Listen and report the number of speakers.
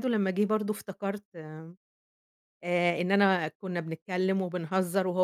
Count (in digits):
1